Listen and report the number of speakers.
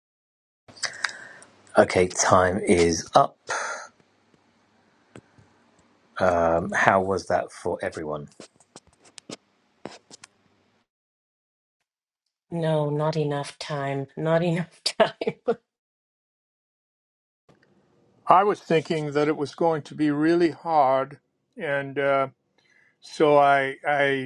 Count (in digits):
3